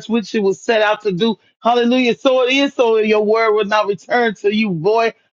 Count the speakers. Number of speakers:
1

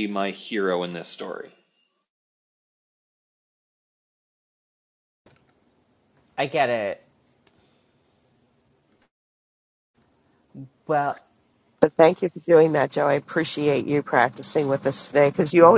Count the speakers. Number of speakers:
3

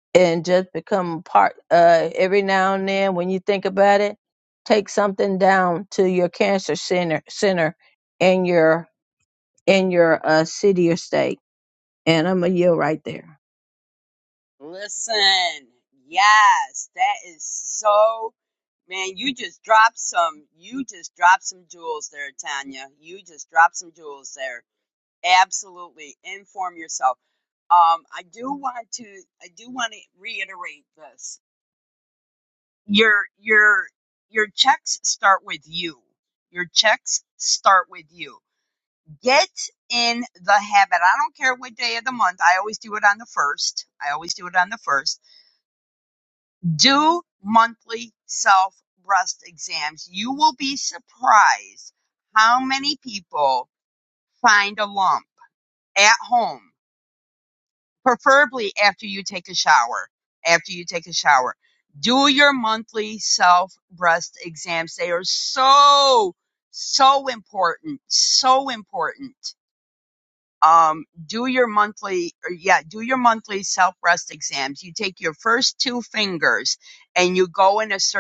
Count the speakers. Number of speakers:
2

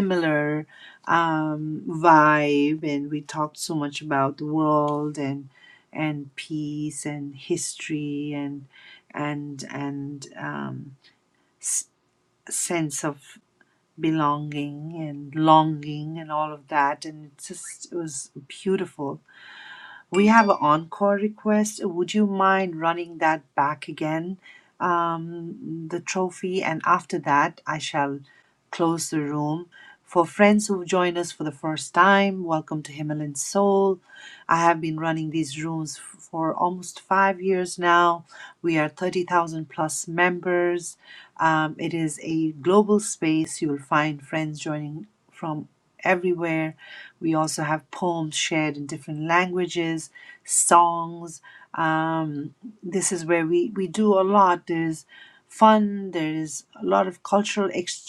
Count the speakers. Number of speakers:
1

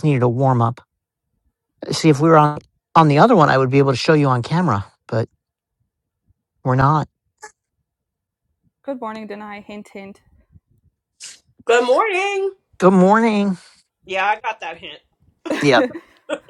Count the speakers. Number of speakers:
3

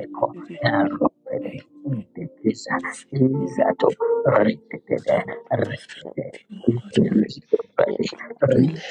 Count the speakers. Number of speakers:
3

